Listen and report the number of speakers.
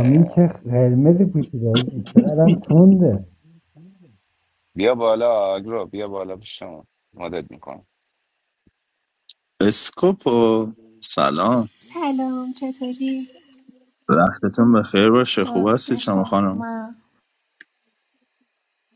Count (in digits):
4